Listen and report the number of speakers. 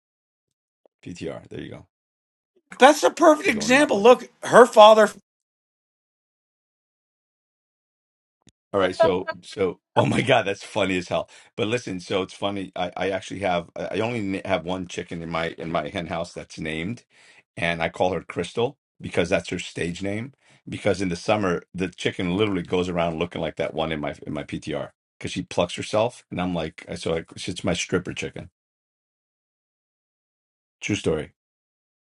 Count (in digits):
2